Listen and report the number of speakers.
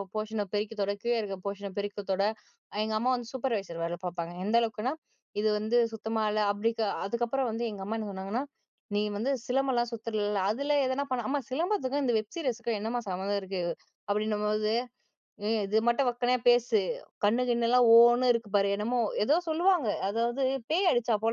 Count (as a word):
one